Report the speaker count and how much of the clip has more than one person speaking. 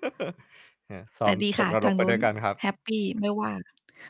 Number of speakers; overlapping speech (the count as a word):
two, about 24%